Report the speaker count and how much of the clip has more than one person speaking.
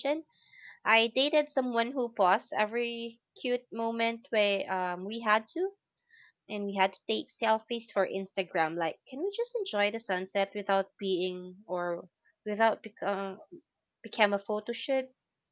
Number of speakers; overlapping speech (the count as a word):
one, no overlap